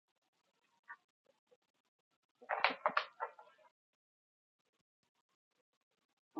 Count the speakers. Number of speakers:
zero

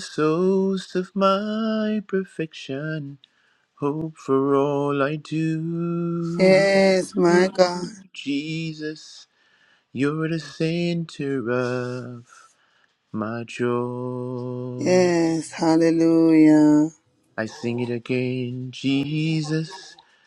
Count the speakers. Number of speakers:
two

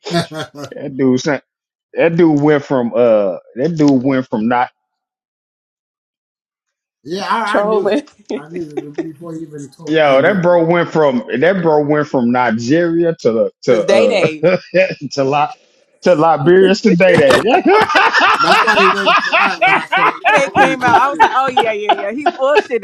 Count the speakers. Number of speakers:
three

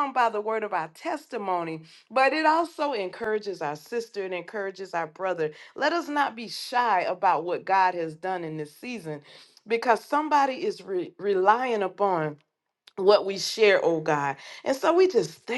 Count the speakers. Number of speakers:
one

